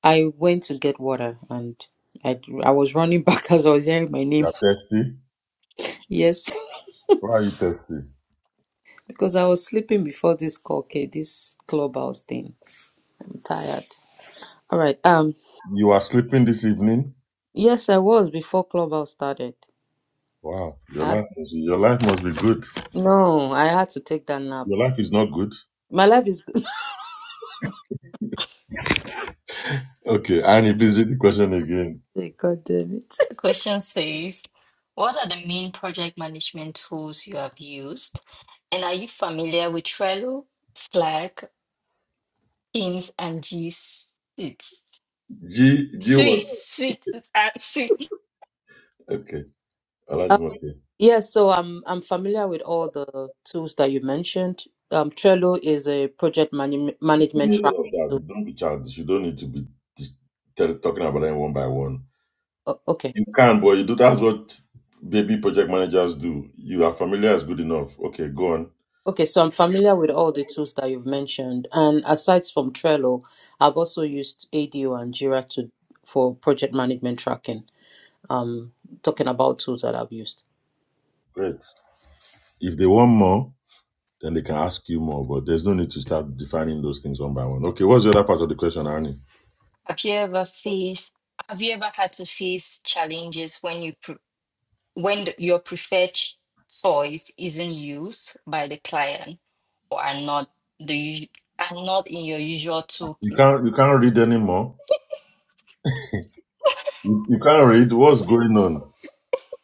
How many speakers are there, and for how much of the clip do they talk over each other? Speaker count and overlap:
3, about 1%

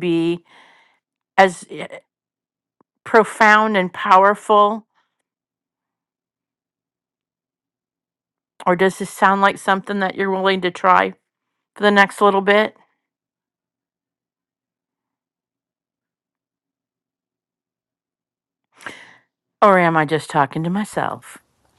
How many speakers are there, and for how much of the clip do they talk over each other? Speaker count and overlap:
1, no overlap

